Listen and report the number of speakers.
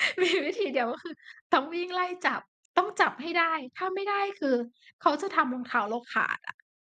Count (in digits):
1